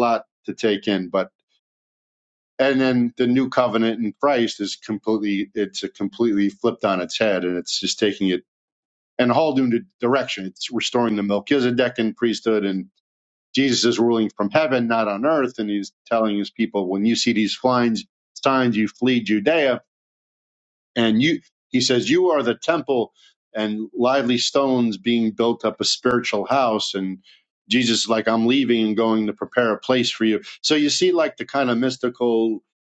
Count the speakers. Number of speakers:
one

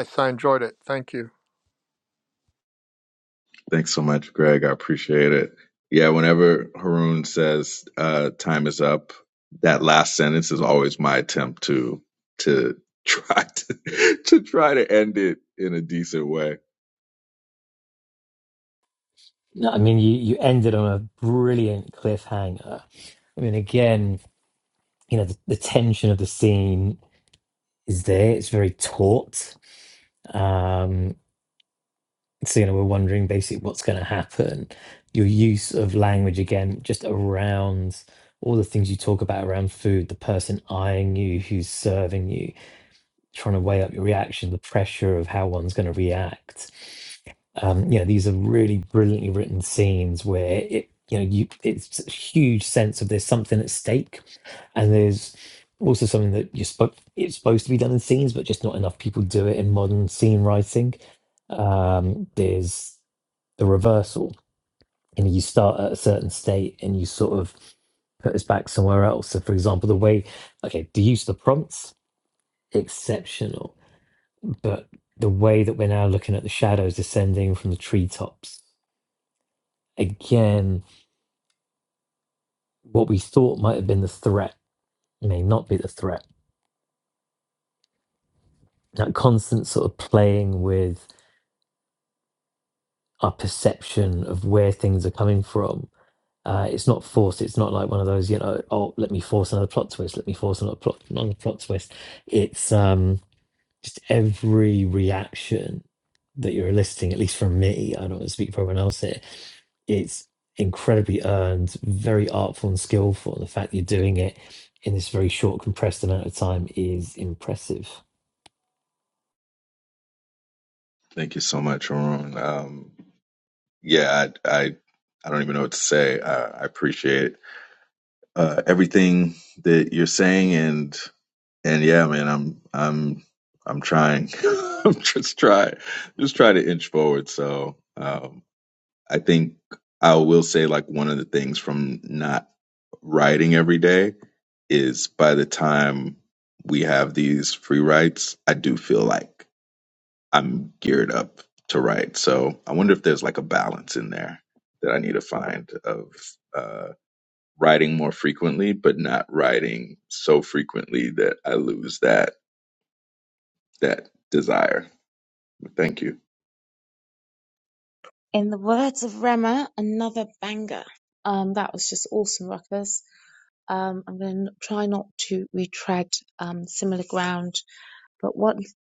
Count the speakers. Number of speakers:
four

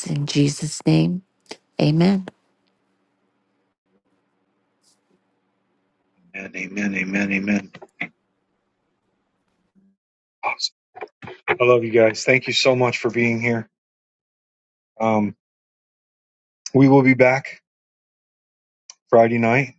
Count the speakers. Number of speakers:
two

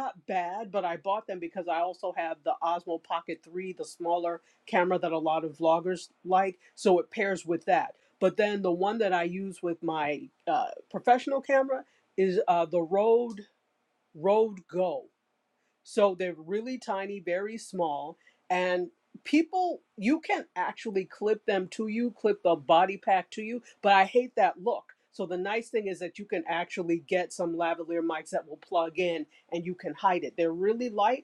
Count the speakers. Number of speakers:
one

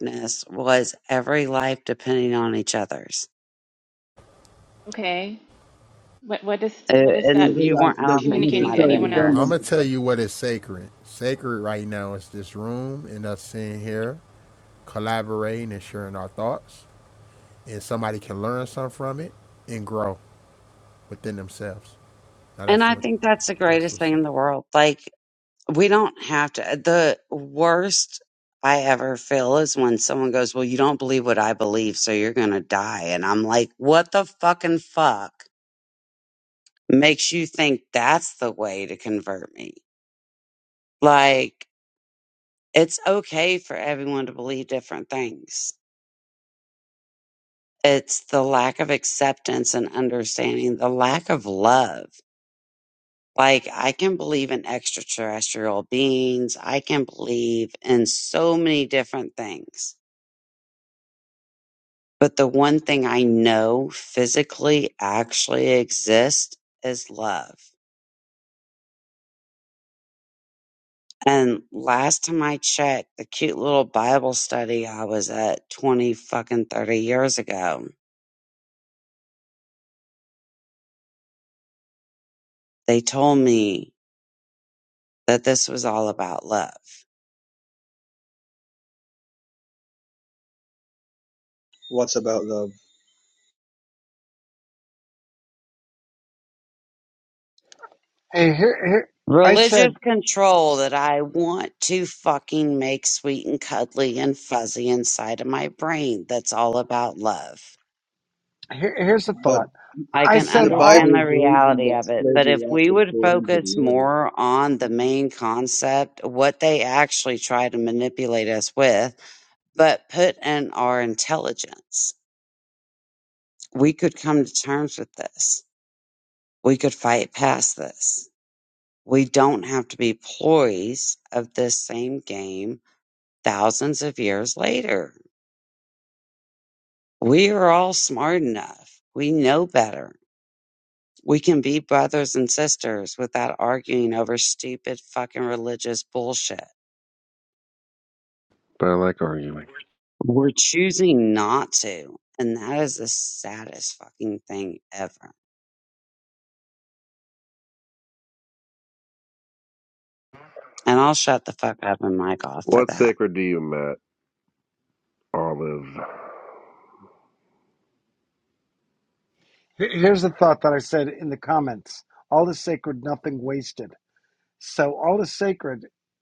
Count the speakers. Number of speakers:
six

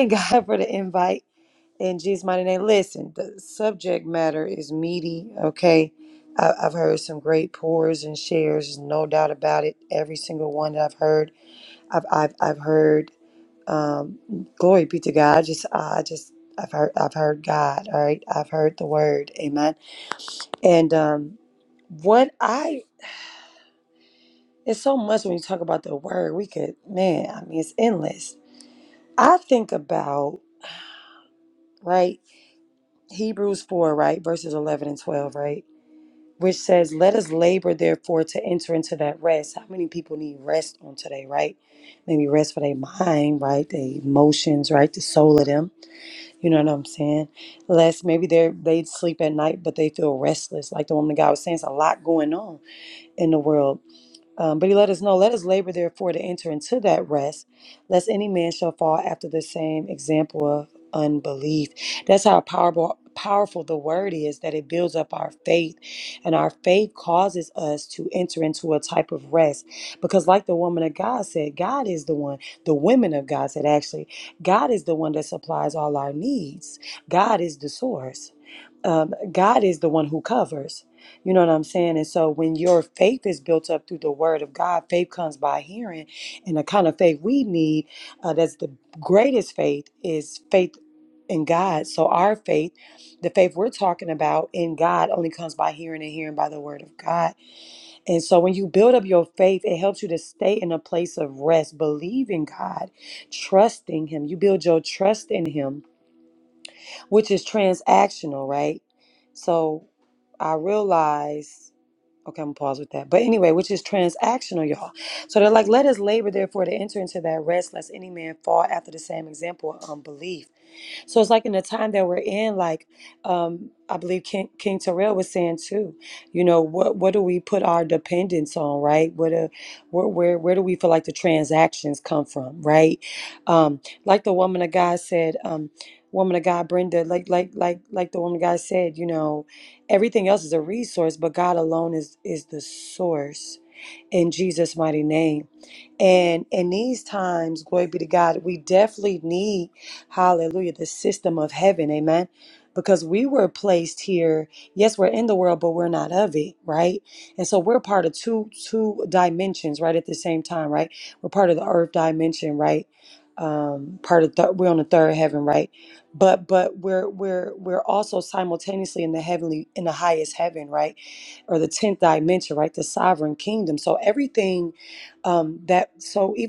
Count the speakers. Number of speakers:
one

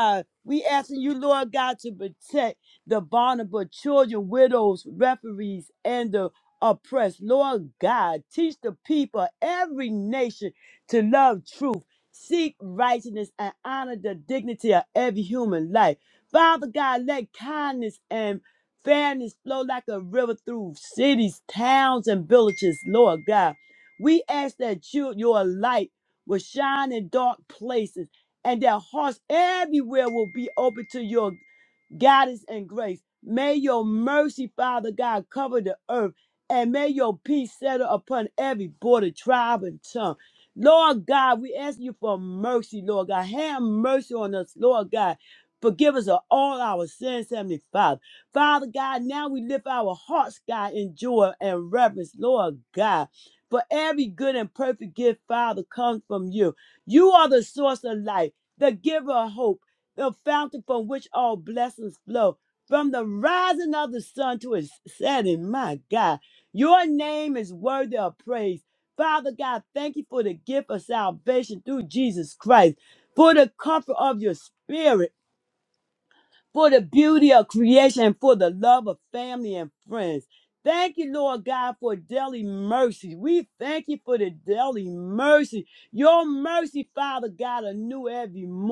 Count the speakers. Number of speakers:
one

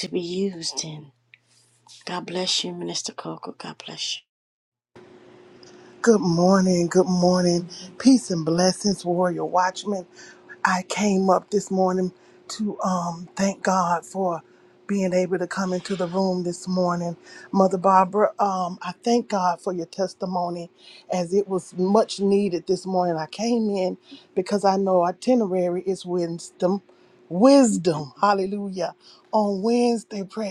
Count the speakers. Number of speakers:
two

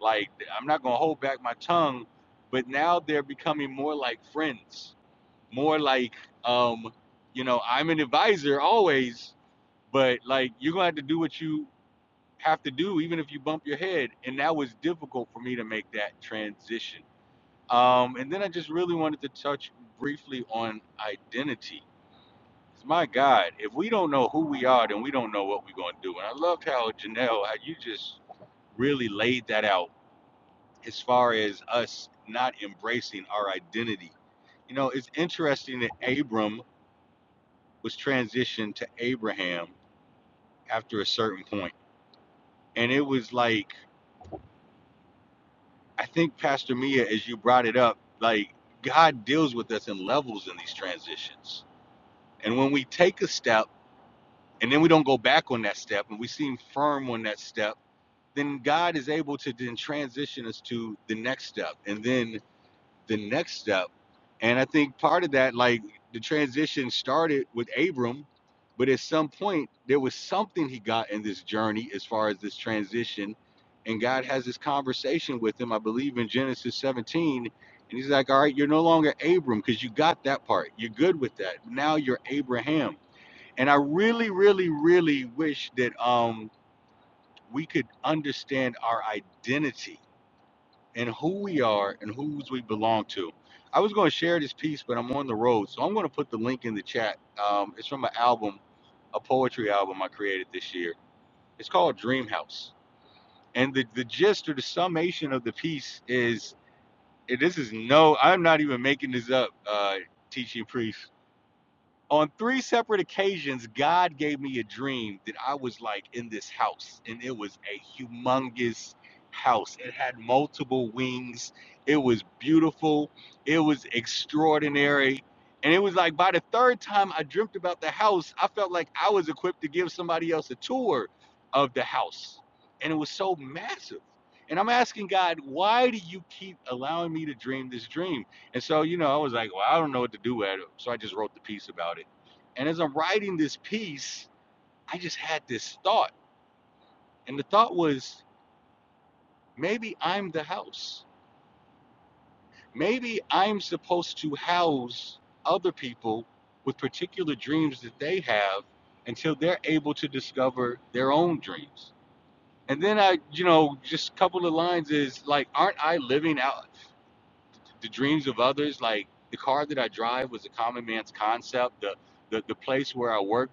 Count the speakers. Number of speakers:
one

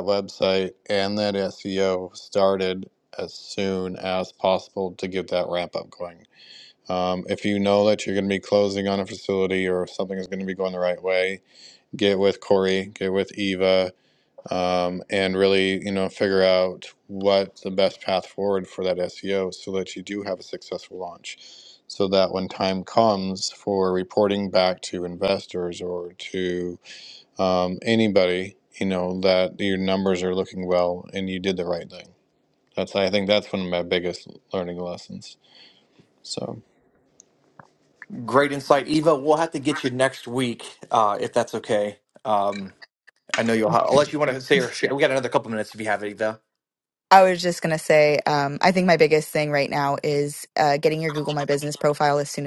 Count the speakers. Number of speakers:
three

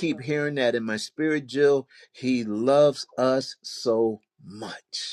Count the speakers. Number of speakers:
one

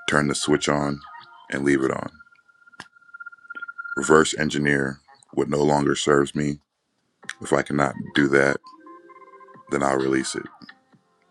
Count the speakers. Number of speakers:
one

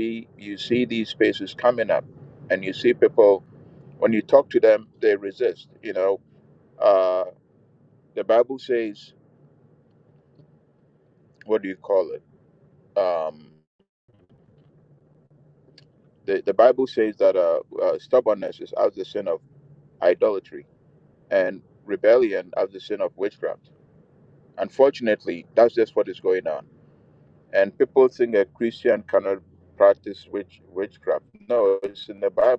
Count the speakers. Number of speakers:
one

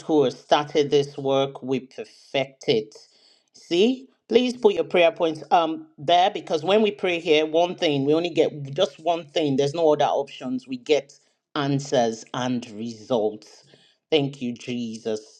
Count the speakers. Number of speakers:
one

